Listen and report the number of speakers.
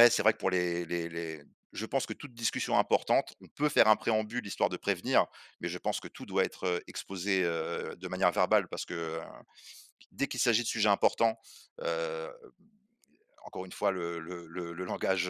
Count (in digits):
1